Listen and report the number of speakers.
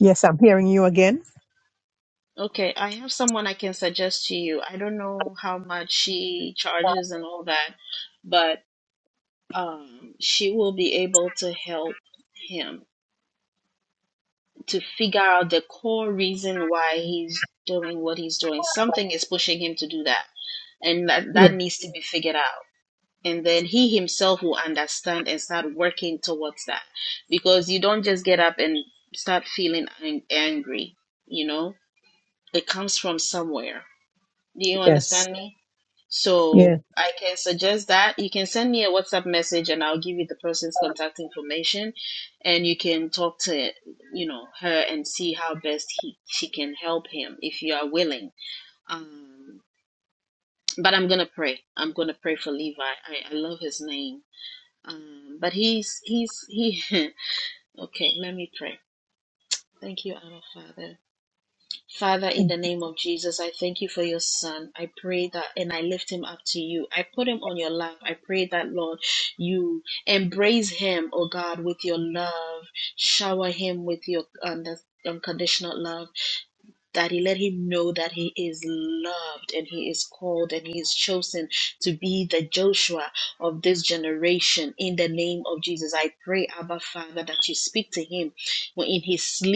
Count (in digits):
2